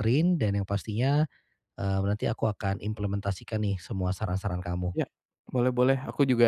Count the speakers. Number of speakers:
two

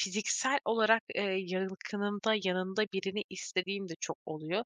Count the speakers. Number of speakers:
one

